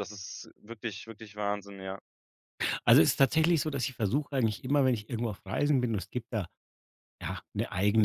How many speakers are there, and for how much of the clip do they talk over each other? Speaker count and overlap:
two, no overlap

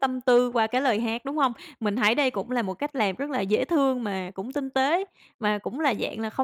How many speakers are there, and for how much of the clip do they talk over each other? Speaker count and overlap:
one, no overlap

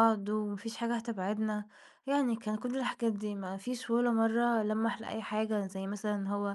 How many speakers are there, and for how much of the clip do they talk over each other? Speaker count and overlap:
one, no overlap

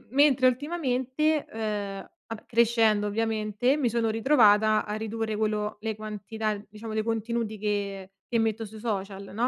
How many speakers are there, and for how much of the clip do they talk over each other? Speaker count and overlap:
one, no overlap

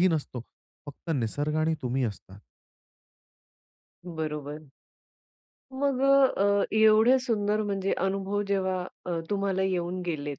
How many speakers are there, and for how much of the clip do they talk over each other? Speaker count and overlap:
two, no overlap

